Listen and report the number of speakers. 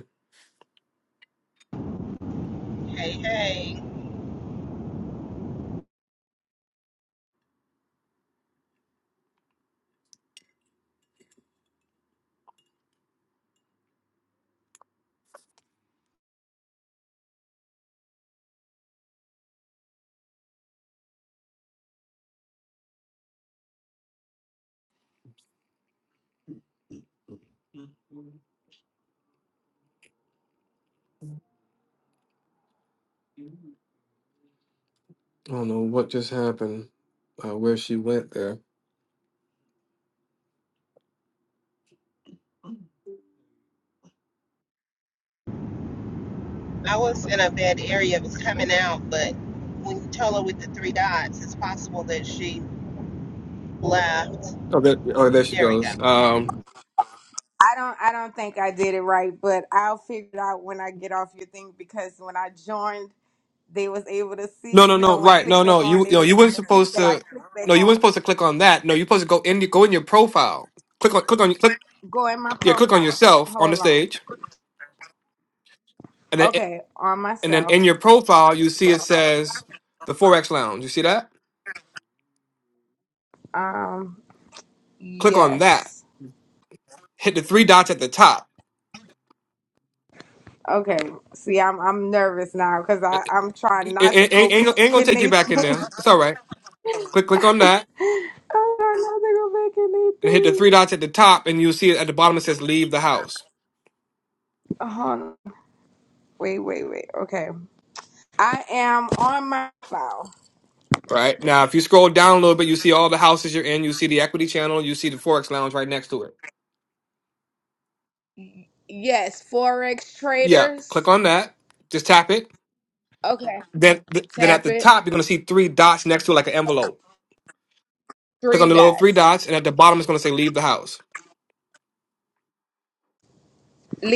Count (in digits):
3